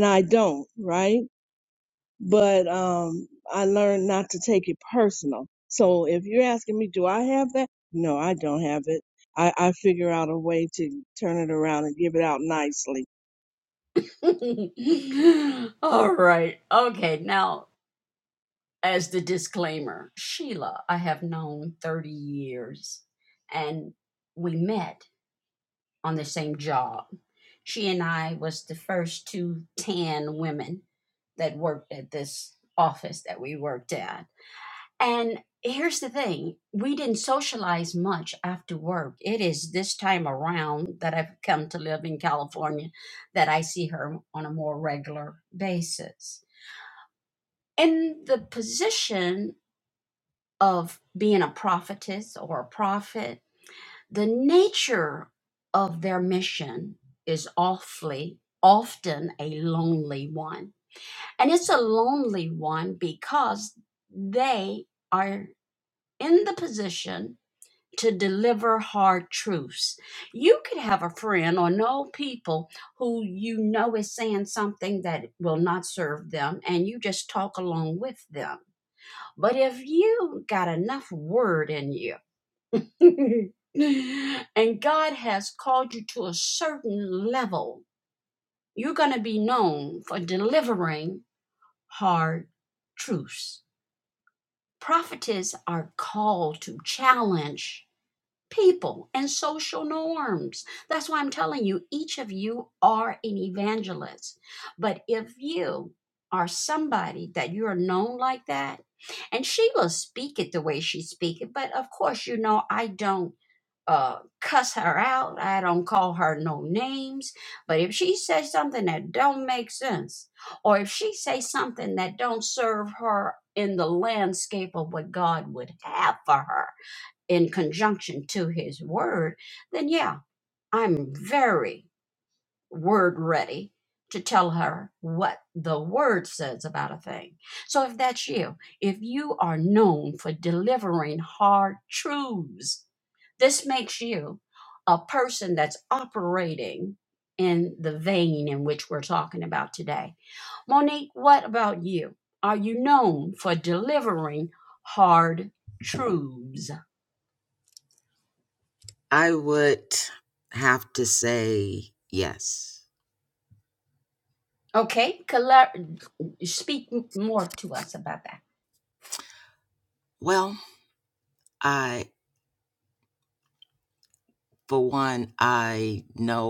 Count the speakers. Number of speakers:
three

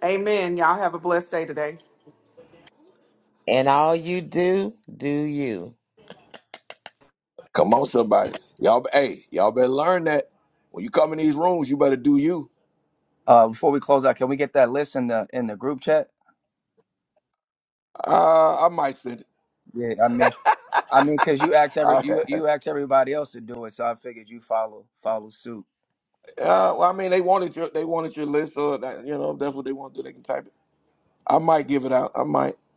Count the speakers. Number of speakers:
four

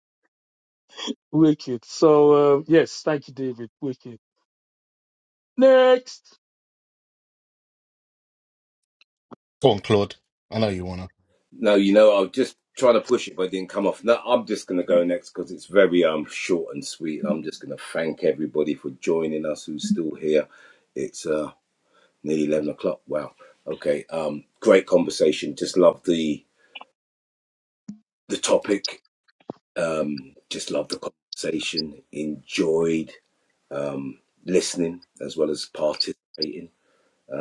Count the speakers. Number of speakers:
three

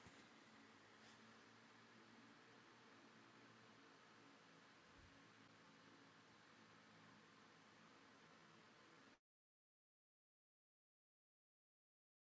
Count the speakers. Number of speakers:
zero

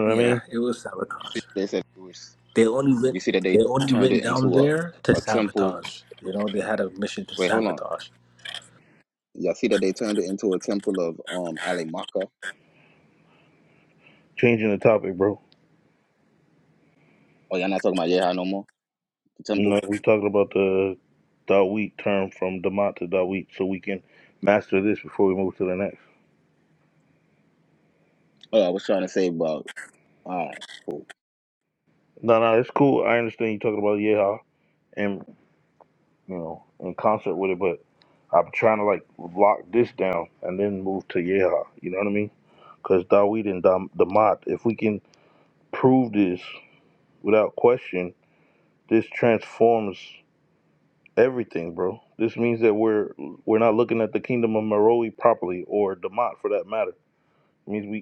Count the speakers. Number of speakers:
three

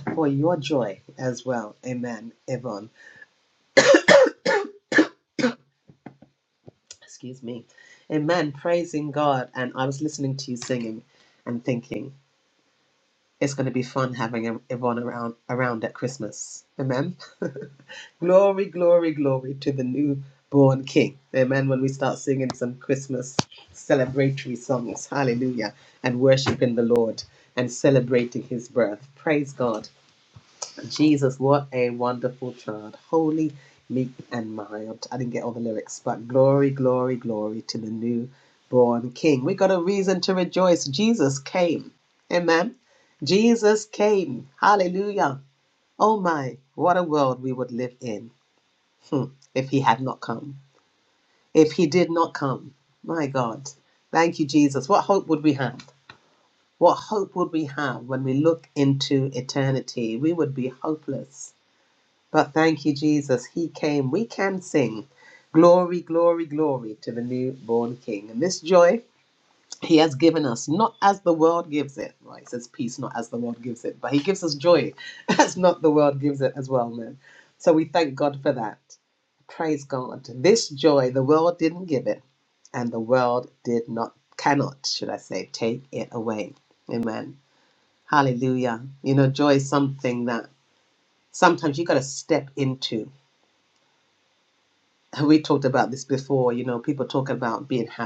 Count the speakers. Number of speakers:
one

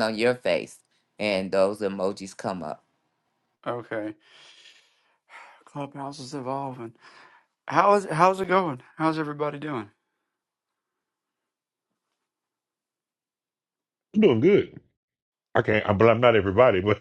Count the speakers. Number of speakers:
three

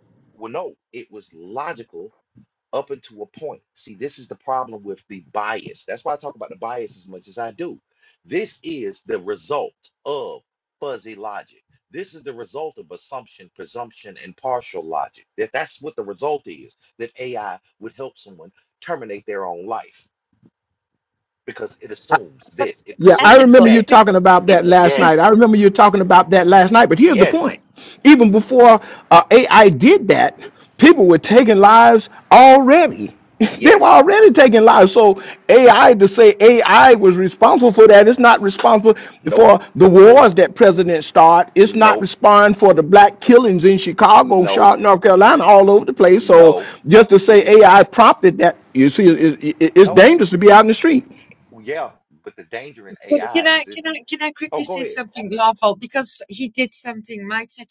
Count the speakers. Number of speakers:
three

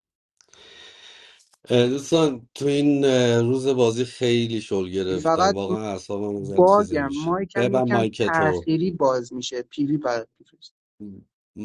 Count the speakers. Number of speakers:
two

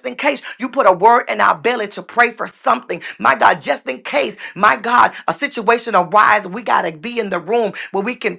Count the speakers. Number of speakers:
one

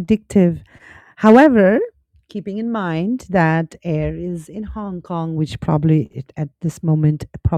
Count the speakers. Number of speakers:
one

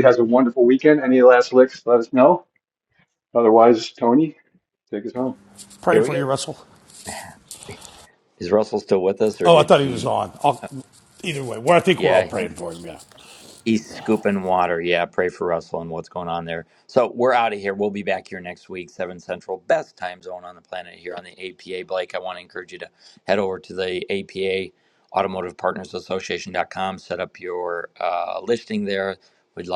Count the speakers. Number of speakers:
three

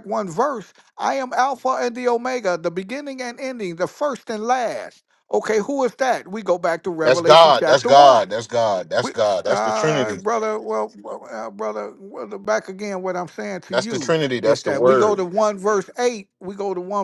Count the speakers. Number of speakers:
two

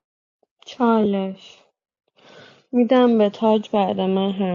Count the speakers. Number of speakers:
one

